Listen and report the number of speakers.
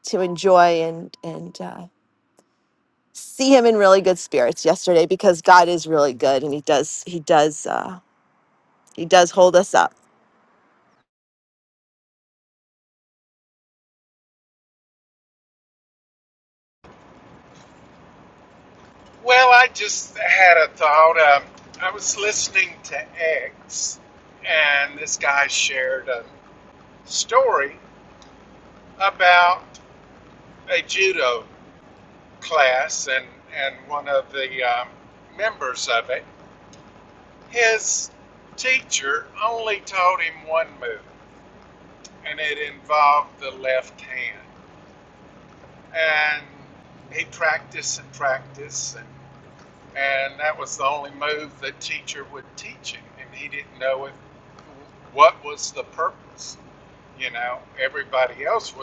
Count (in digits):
2